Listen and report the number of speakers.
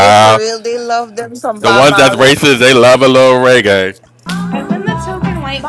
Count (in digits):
3